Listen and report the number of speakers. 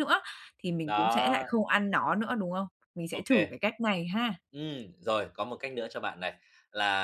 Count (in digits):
2